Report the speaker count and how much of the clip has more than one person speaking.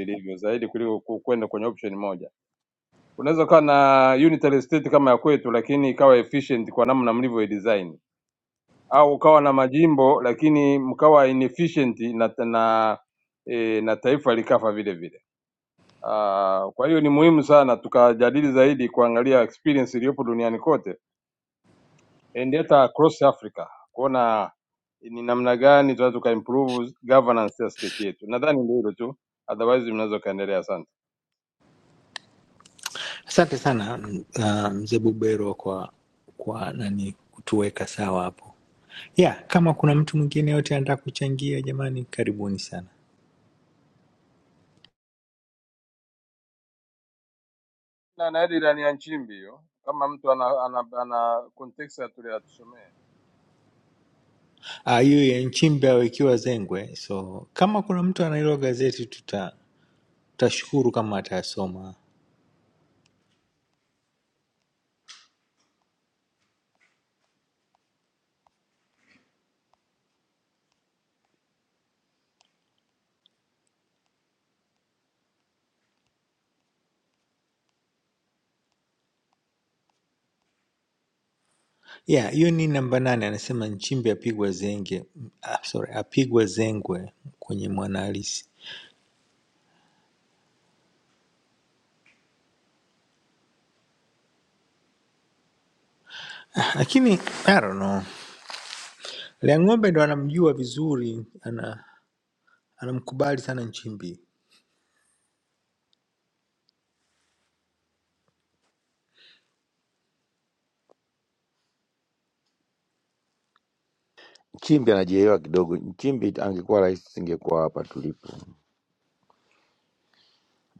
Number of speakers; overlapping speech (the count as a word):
three, no overlap